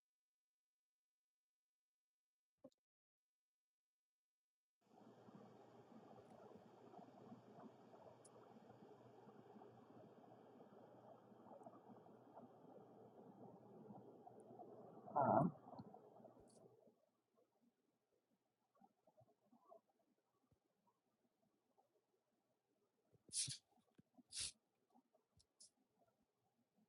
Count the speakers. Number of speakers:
zero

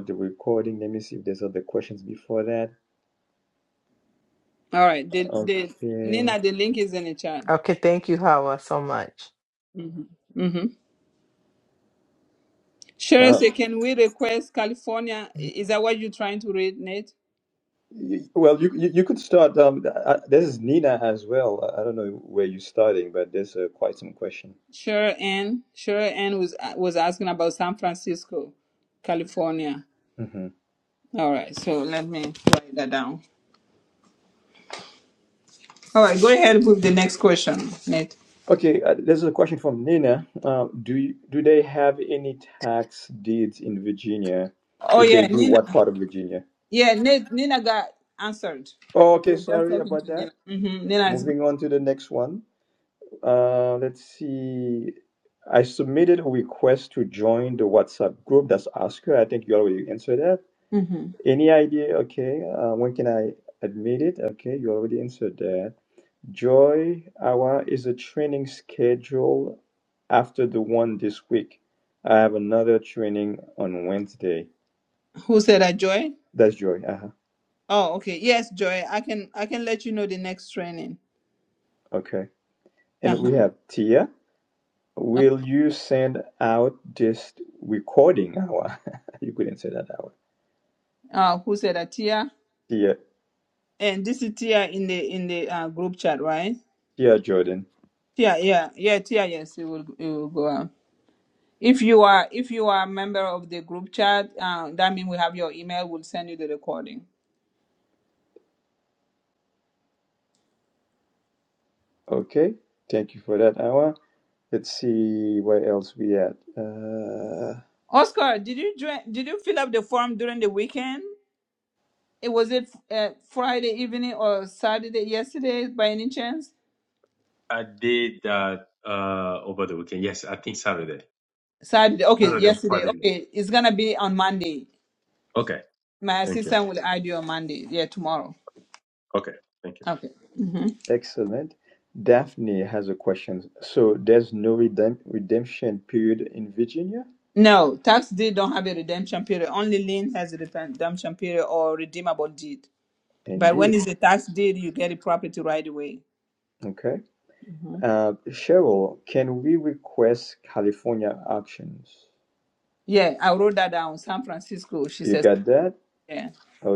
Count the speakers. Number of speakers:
four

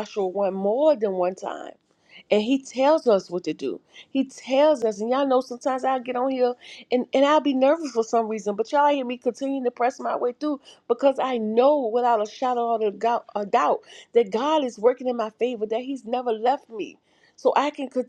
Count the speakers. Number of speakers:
one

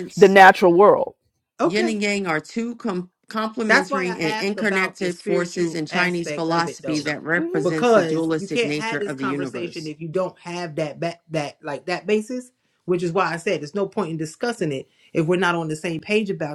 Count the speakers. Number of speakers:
three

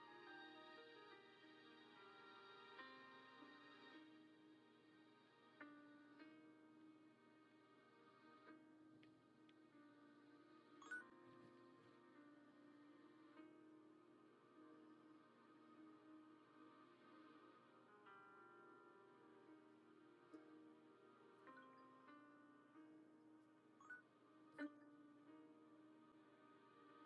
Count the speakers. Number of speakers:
zero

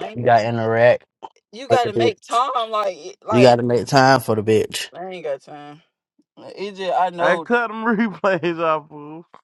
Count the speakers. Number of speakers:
three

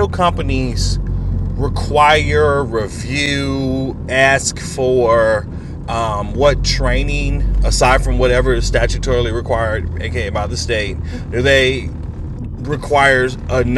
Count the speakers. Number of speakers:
one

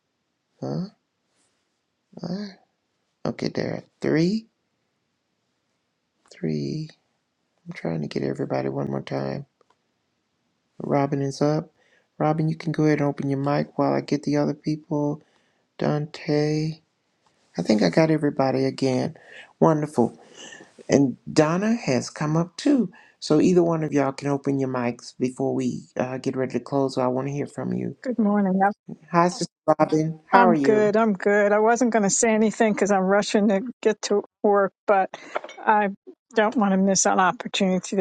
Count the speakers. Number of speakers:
two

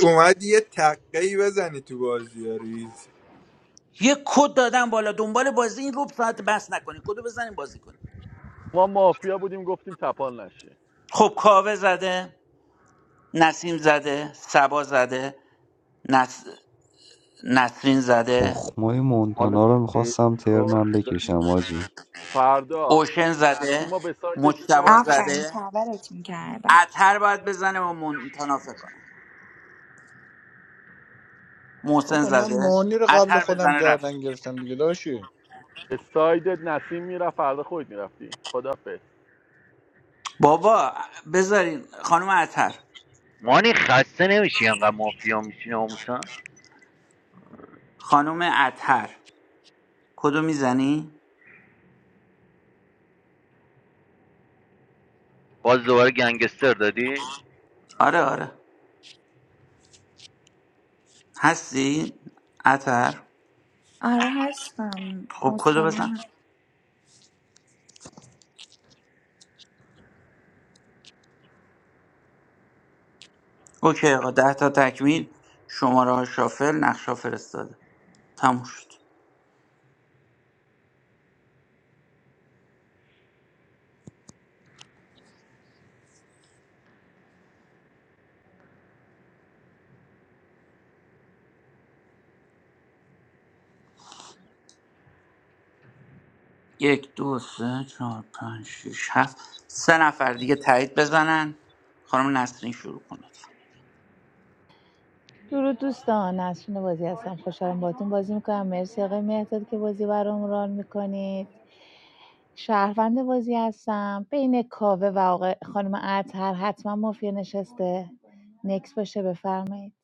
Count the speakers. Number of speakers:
eight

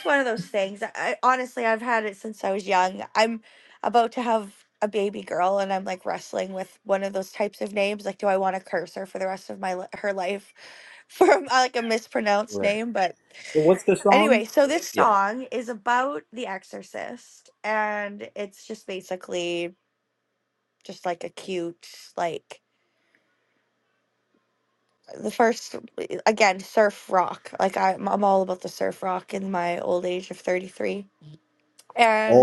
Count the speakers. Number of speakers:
two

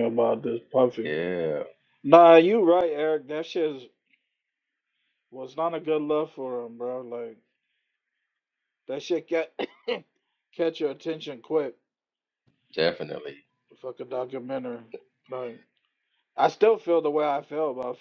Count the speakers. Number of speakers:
two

